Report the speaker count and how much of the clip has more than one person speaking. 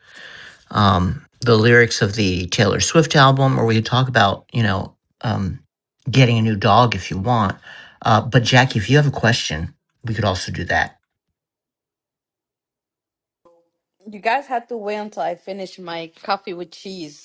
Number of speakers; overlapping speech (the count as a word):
two, no overlap